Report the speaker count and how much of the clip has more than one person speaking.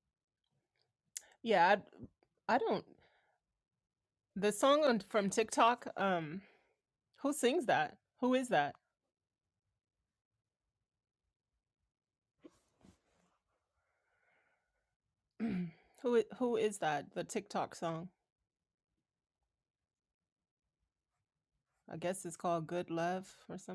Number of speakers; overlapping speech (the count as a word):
one, no overlap